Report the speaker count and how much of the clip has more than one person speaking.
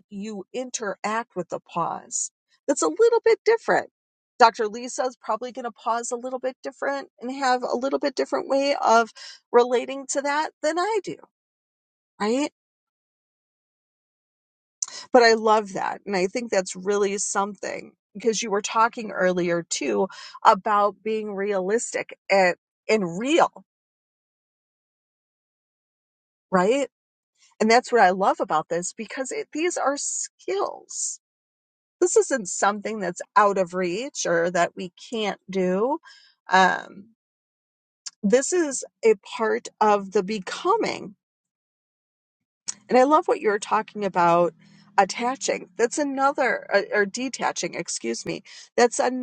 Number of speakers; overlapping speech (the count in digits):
1, no overlap